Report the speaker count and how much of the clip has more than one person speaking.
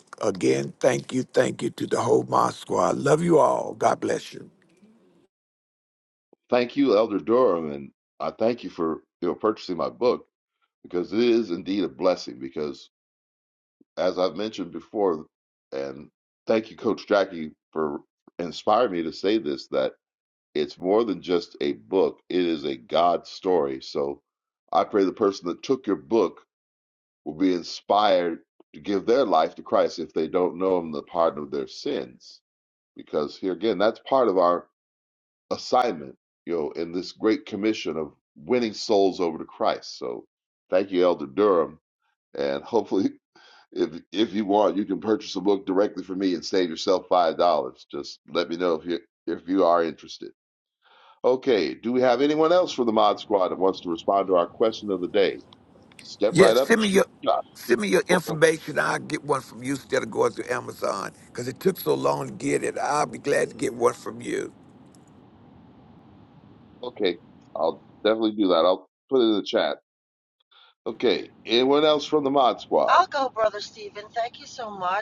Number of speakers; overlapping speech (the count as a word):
three, about 2%